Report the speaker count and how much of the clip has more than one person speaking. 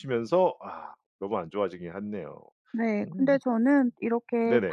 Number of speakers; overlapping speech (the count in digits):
2, about 12%